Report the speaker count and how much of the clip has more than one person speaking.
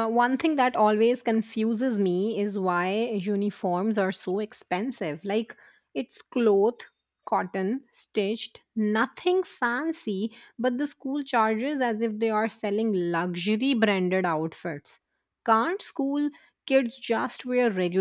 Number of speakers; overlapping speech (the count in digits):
1, no overlap